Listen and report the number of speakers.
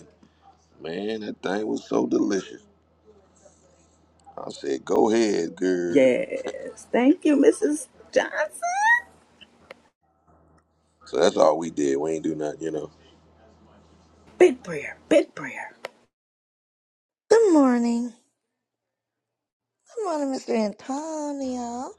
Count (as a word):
three